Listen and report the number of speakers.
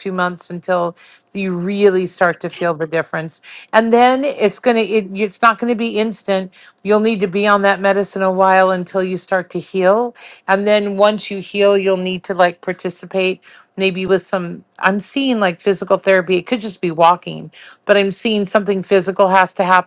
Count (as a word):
one